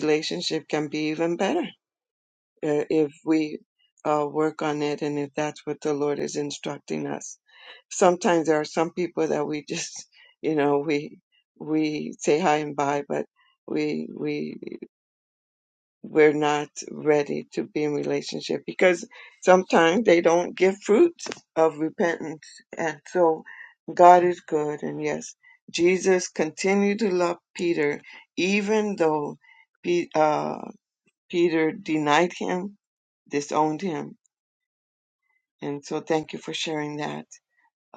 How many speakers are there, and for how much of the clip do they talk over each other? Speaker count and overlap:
one, no overlap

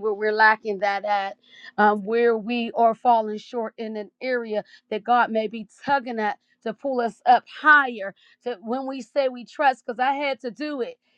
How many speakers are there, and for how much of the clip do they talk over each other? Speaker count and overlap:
one, no overlap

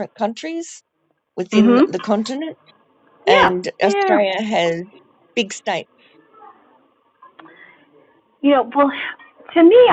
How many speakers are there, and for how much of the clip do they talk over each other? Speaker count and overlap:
two, about 13%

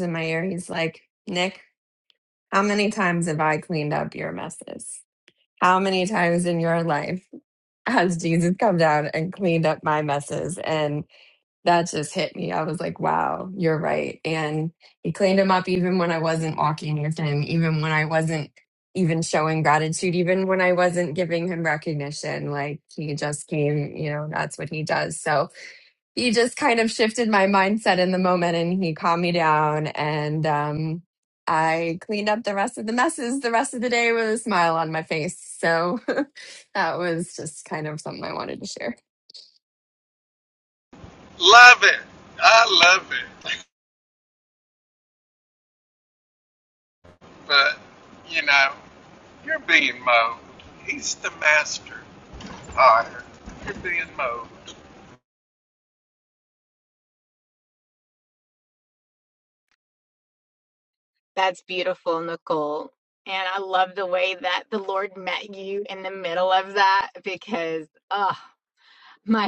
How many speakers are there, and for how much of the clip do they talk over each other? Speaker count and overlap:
three, no overlap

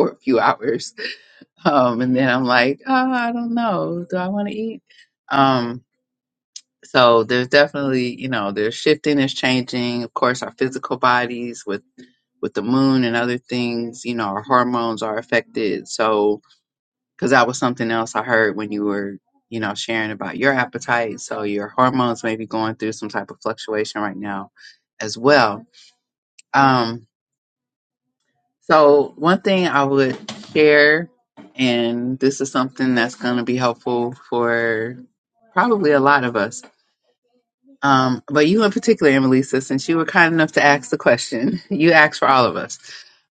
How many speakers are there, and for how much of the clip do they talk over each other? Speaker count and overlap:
one, no overlap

